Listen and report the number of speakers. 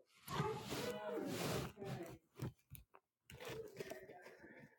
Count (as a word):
zero